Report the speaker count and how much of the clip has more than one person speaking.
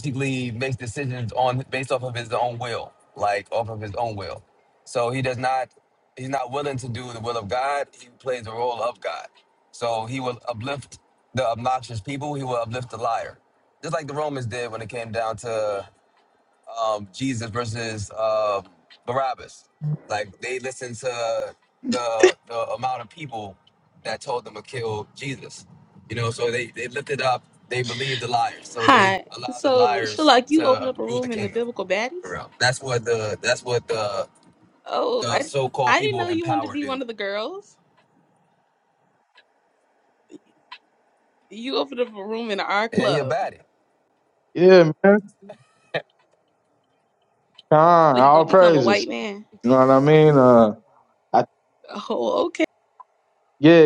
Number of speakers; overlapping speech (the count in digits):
3, about 10%